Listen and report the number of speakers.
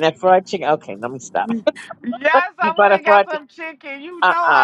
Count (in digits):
2